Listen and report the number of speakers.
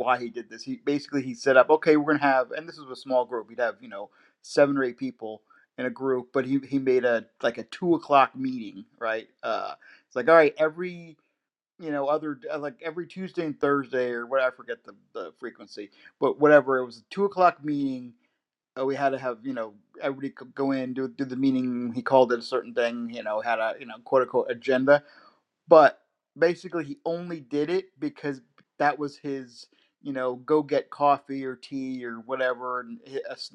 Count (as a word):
one